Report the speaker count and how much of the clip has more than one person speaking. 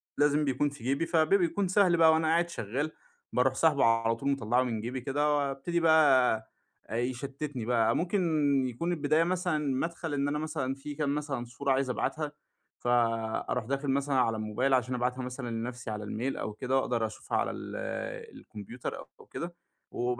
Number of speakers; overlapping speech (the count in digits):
1, no overlap